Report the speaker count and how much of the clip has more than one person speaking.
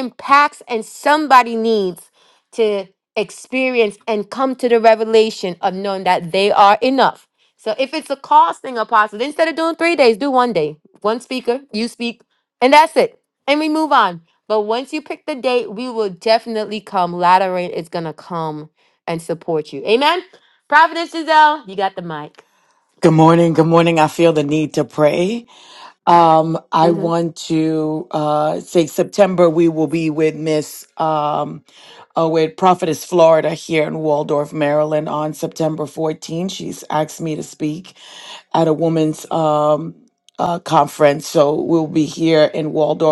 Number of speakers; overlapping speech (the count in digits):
2, about 1%